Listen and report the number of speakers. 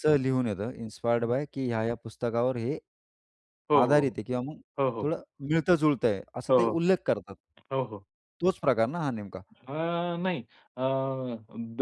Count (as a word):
two